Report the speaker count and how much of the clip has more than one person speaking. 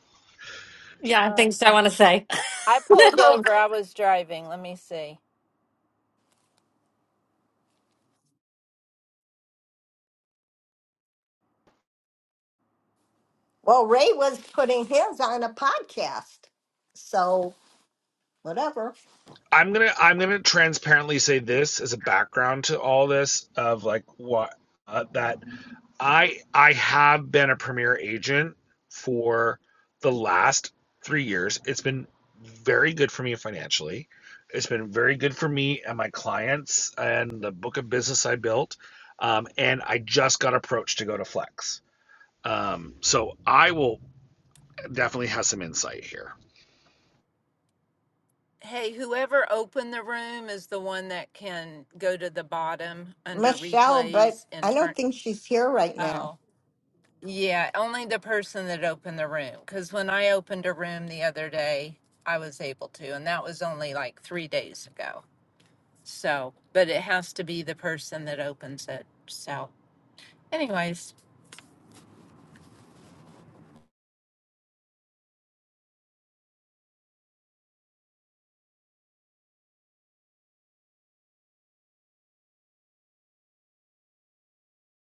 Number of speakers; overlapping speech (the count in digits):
4, about 3%